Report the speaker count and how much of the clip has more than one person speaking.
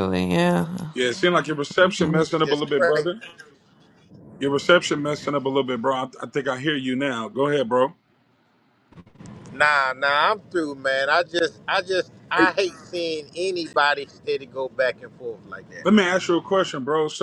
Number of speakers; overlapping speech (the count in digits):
3, about 7%